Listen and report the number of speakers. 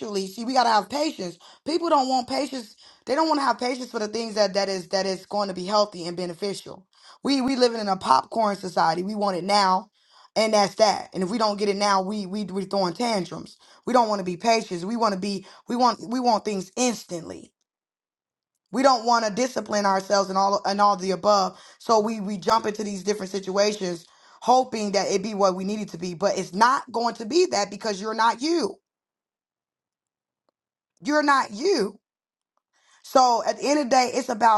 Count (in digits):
1